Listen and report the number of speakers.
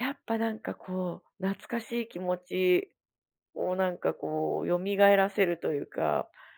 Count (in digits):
1